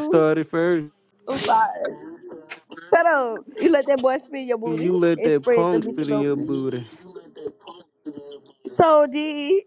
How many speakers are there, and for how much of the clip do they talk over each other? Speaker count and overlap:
2, about 23%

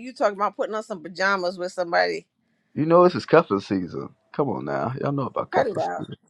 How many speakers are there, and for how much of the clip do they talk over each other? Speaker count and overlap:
2, about 9%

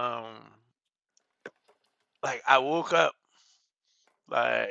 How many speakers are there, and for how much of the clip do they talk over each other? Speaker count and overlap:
1, no overlap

